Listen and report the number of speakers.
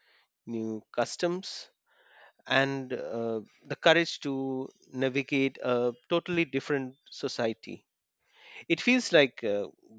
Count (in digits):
1